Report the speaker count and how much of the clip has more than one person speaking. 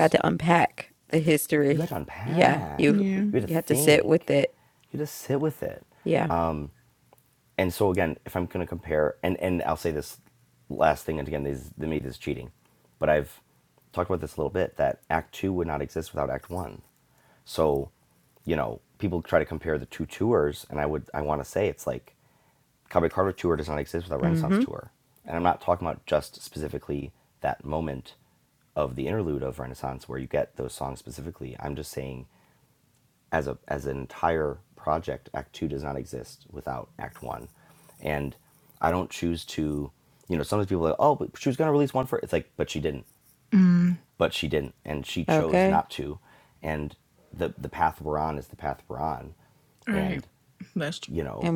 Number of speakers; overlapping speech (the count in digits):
3, about 6%